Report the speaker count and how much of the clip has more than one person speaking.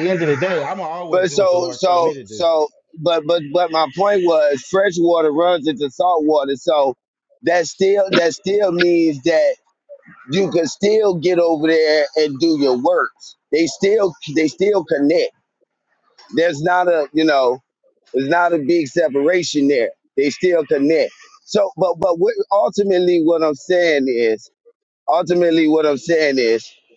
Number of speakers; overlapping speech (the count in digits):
2, about 5%